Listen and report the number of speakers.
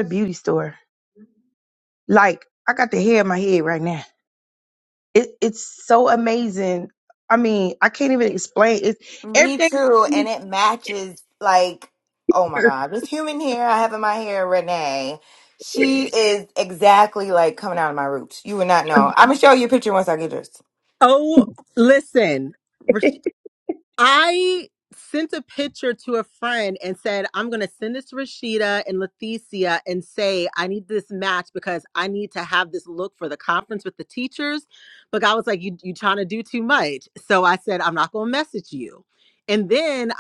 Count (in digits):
3